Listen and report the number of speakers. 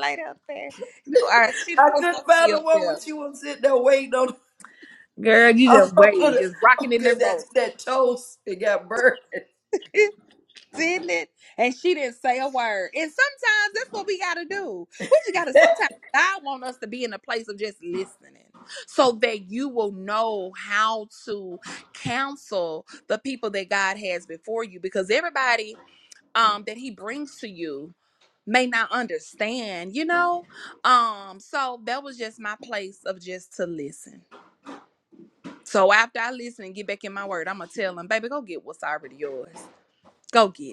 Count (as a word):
two